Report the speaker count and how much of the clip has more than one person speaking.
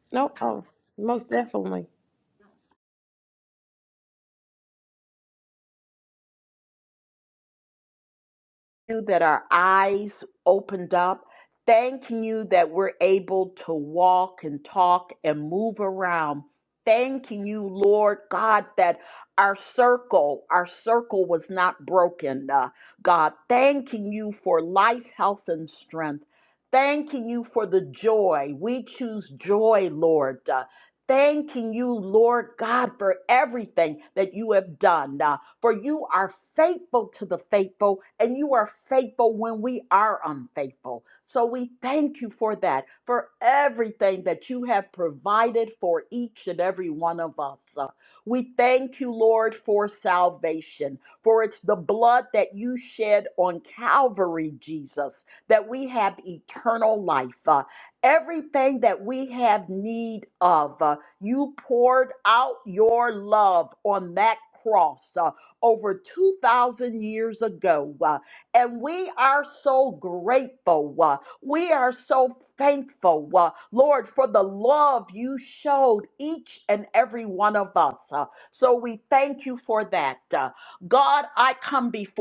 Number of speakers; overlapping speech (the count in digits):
2, no overlap